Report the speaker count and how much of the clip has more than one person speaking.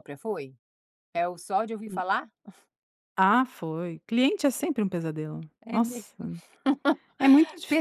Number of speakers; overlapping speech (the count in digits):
2, about 5%